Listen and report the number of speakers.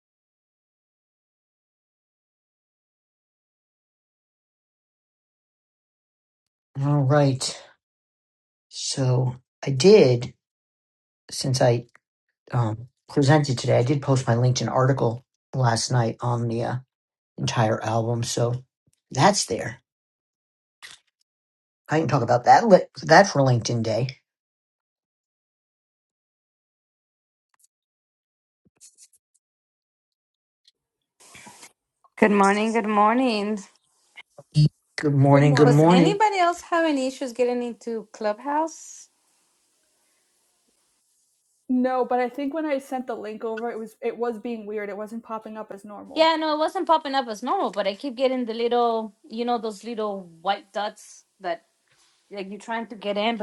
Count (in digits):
3